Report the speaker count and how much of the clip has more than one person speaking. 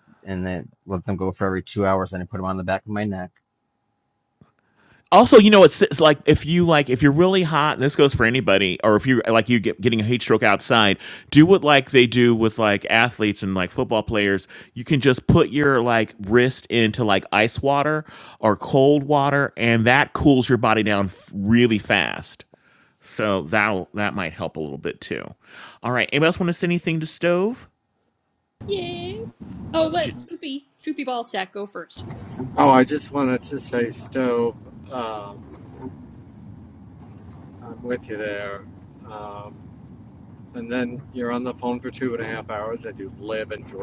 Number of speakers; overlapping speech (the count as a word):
four, under 1%